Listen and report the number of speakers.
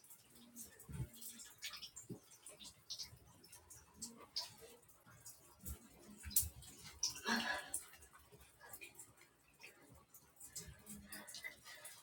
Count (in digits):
0